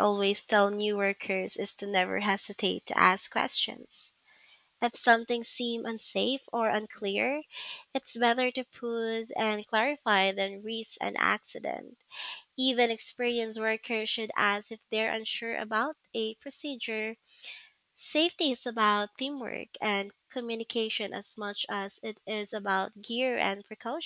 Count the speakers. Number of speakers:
1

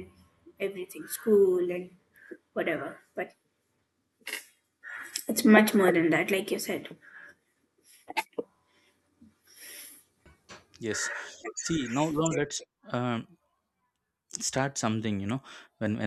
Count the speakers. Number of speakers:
2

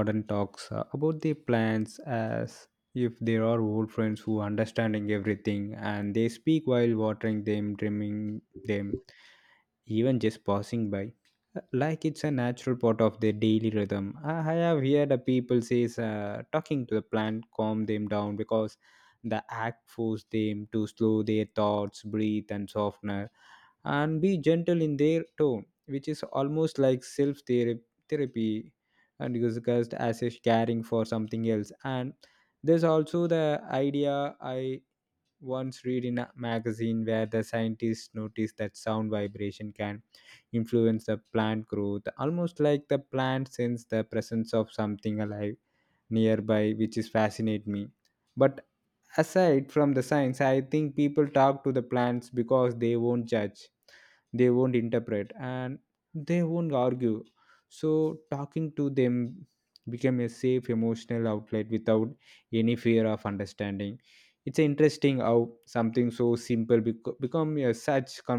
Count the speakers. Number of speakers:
1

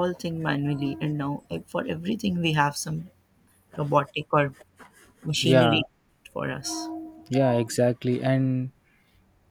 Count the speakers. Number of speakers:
2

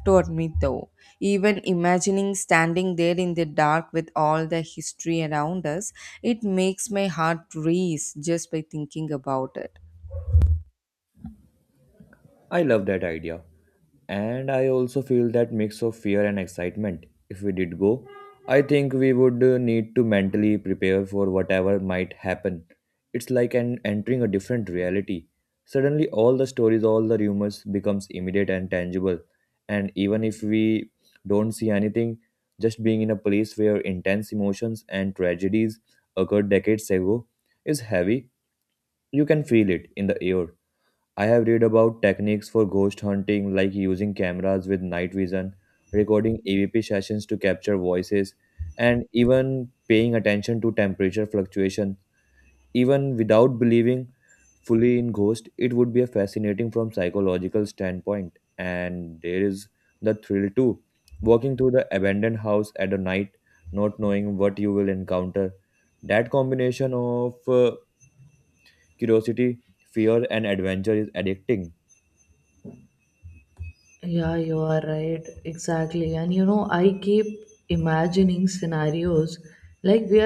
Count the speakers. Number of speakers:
3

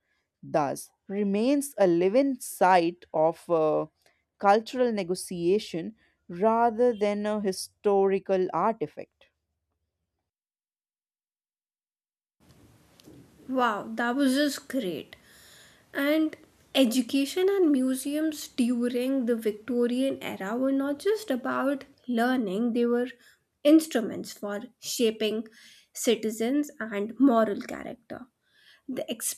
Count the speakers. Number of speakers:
2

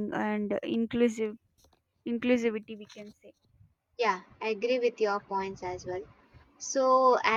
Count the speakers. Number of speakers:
2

